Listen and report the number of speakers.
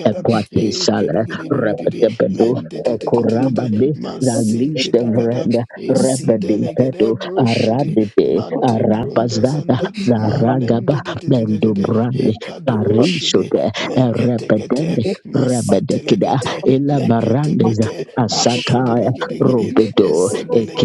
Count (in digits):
2